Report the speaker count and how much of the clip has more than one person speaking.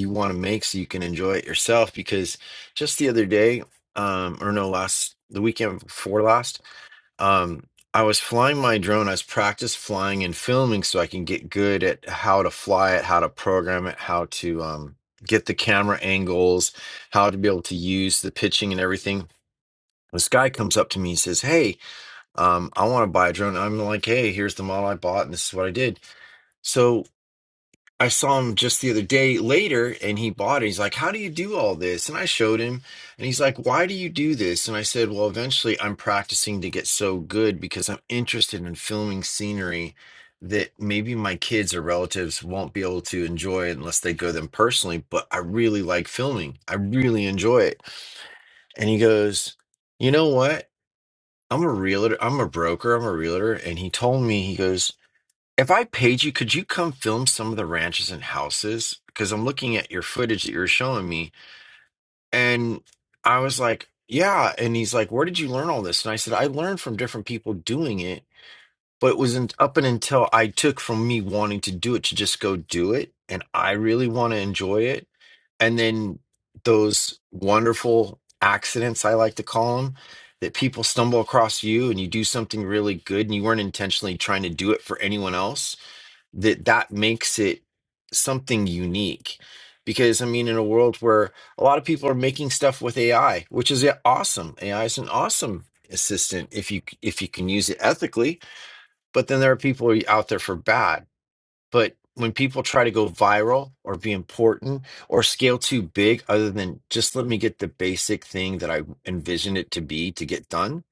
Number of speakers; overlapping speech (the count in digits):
1, no overlap